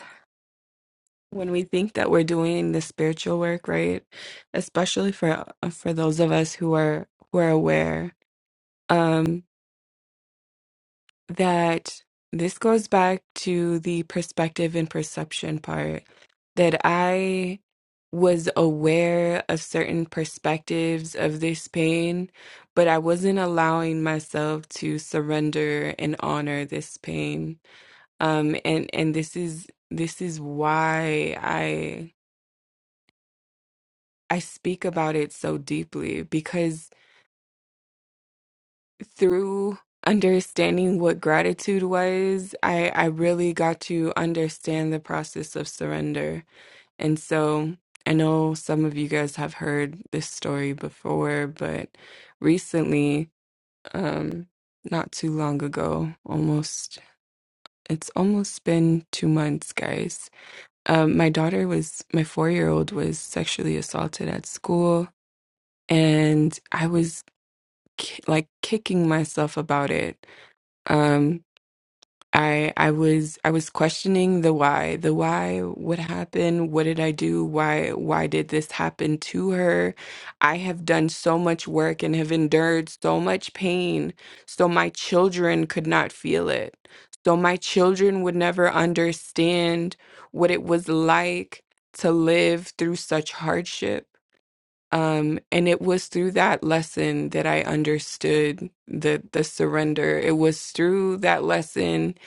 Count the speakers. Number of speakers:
1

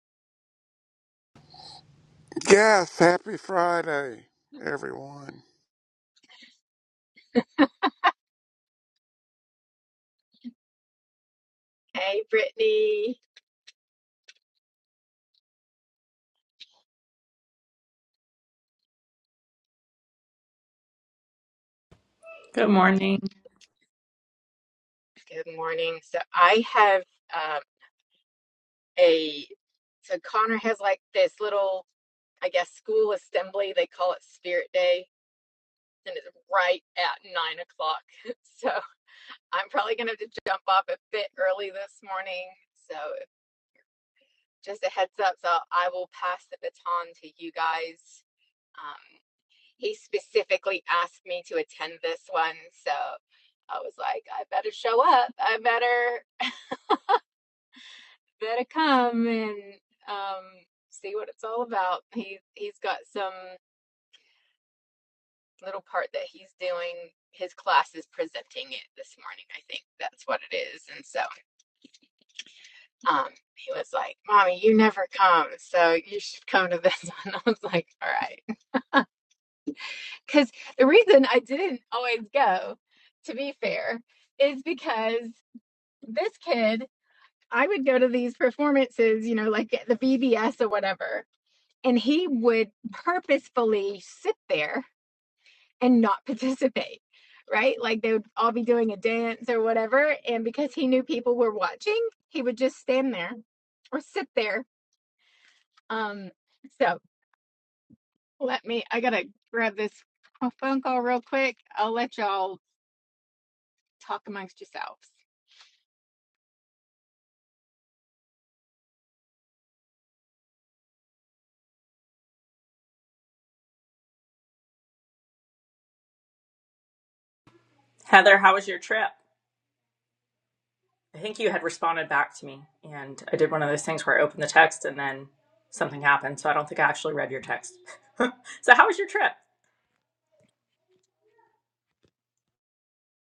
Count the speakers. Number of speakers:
3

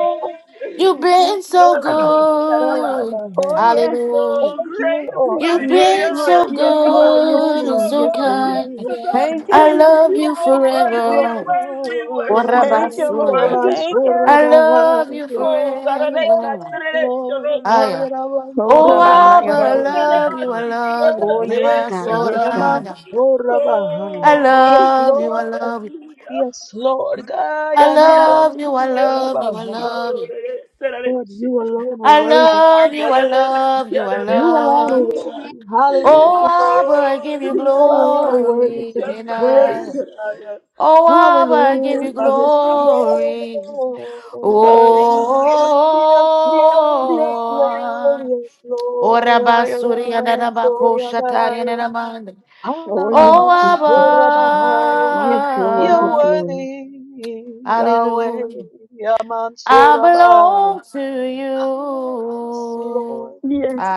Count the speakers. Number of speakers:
4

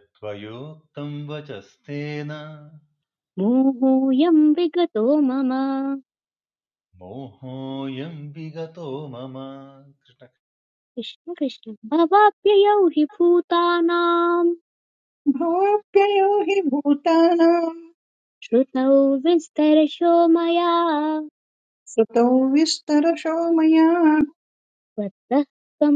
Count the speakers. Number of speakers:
3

